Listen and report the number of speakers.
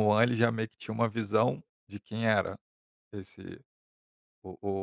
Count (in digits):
1